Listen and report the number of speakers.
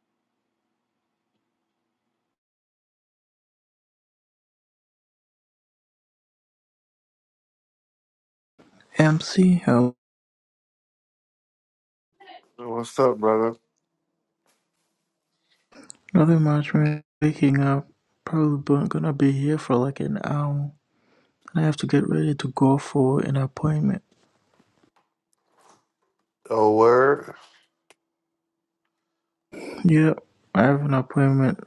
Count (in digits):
2